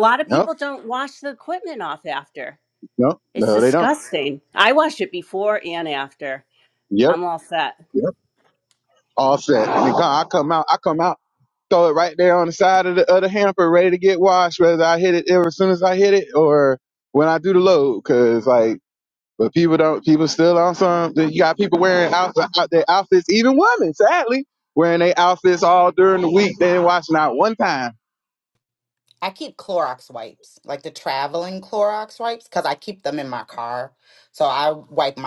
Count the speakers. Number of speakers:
3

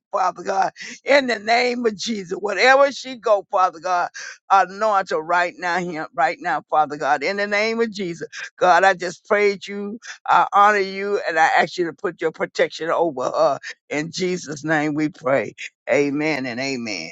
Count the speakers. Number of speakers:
1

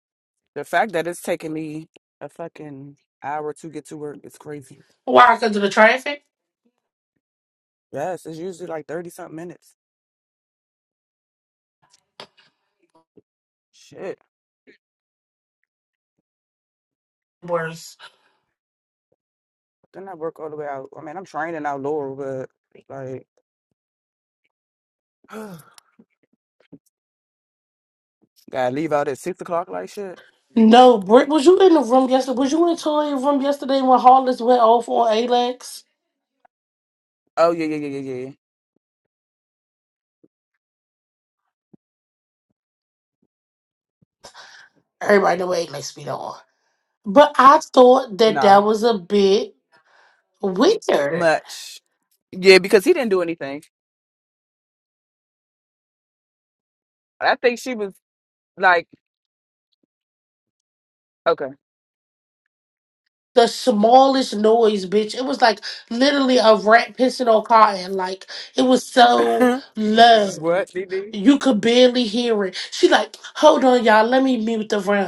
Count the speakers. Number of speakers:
2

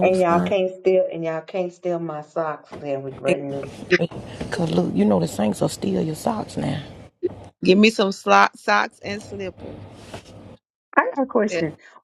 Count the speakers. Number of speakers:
3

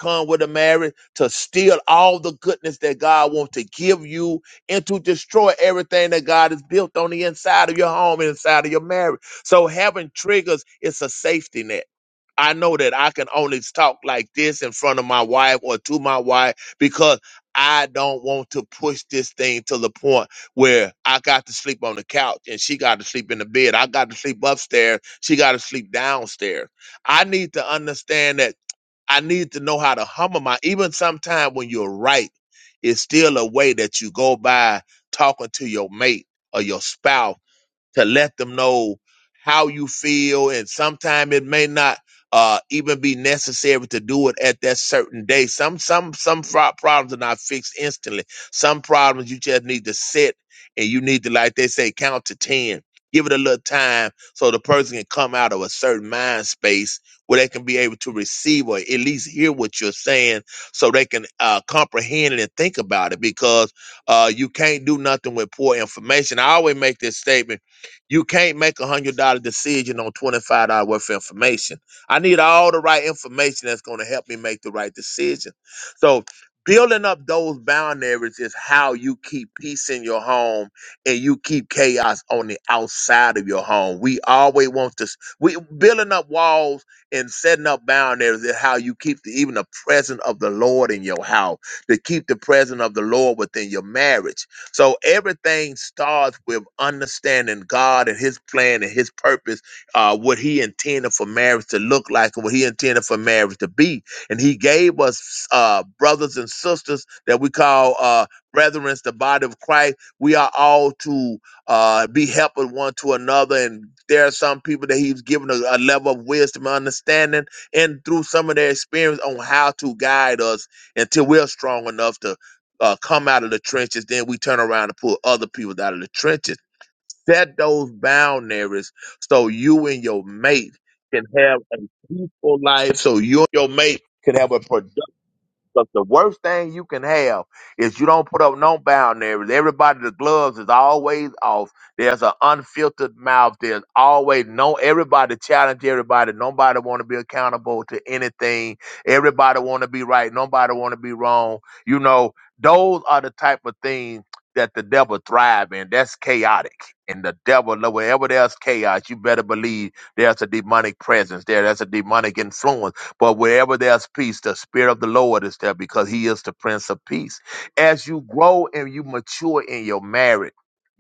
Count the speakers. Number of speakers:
1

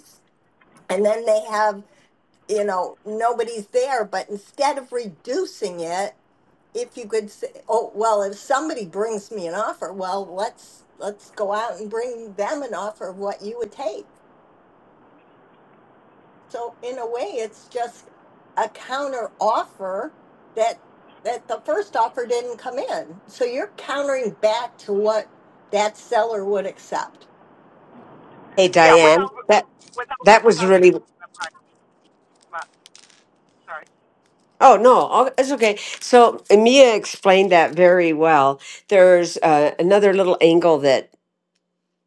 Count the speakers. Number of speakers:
3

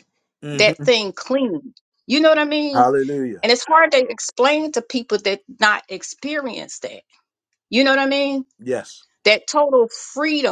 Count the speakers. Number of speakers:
2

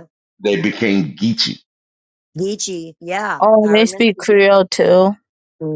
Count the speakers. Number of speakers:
3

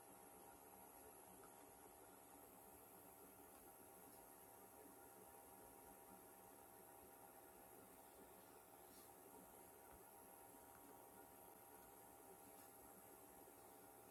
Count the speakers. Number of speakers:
0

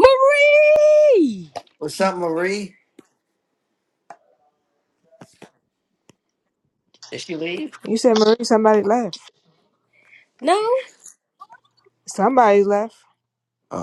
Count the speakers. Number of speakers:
3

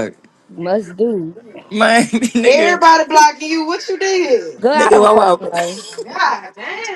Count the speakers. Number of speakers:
3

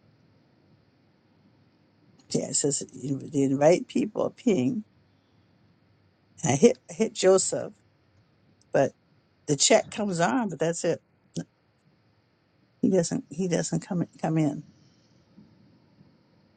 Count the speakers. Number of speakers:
1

